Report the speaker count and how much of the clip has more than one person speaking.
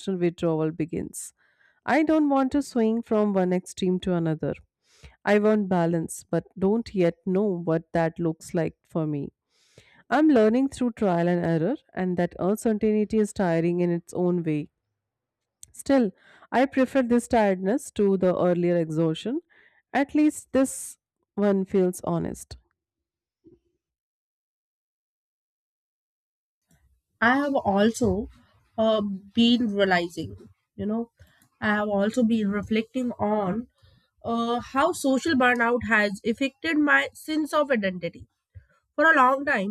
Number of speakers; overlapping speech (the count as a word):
two, no overlap